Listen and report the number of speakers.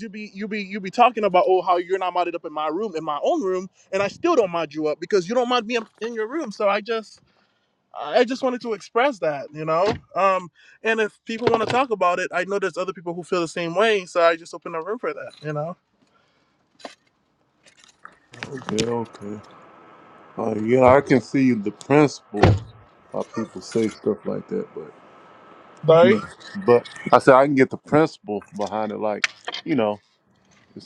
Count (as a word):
two